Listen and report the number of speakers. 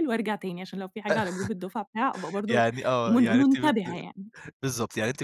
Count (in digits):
2